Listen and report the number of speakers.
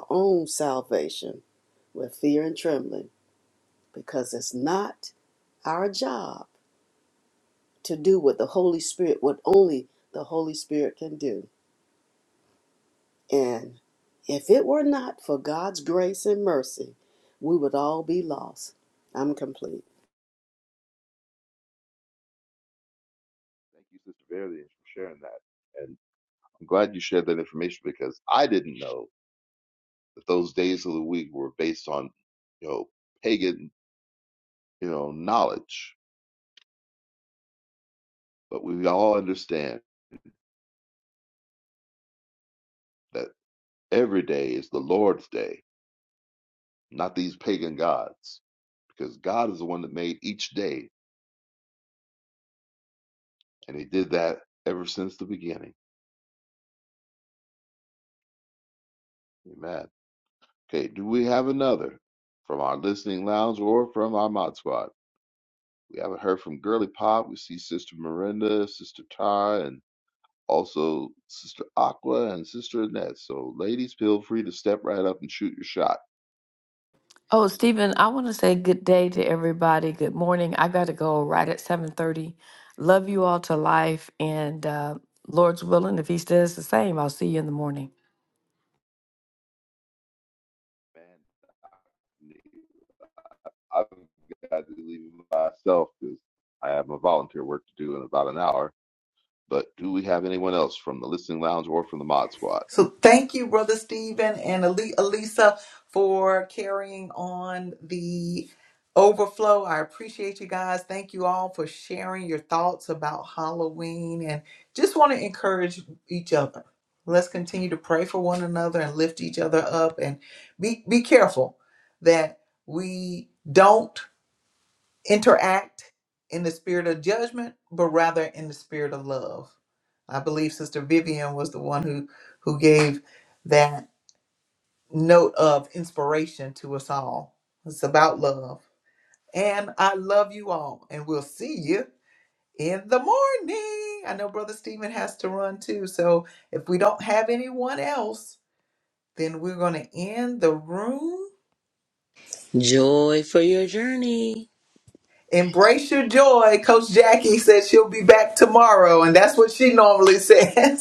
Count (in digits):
5